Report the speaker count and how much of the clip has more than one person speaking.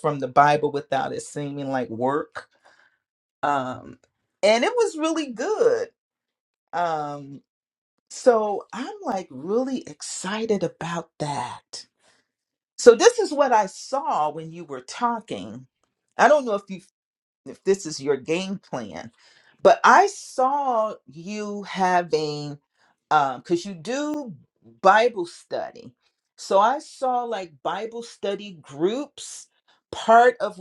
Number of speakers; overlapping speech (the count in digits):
1, no overlap